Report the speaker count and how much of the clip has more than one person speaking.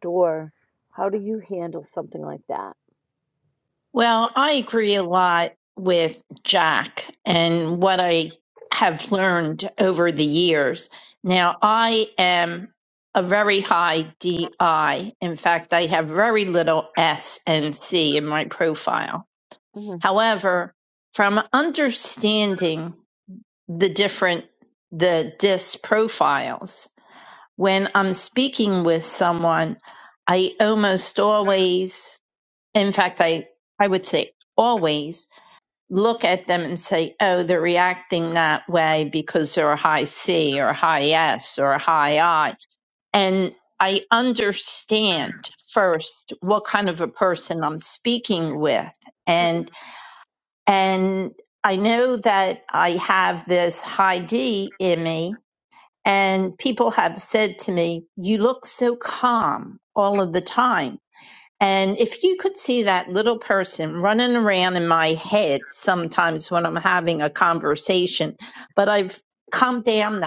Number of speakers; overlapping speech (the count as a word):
two, no overlap